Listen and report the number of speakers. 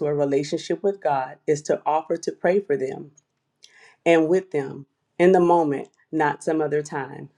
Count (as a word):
one